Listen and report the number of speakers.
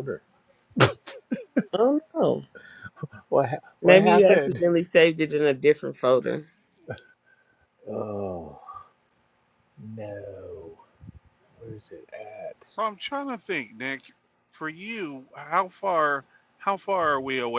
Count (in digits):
3